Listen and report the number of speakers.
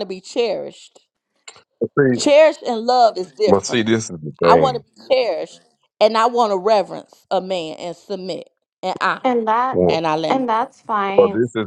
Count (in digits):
3